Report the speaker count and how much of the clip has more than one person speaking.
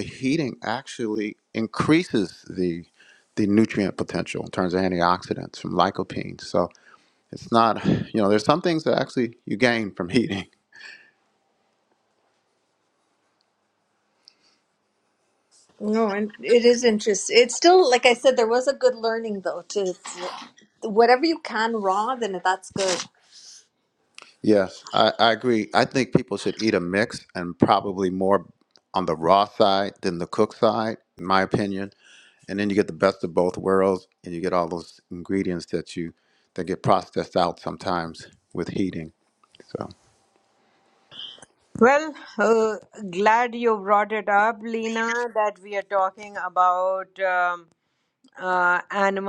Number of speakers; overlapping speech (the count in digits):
3, no overlap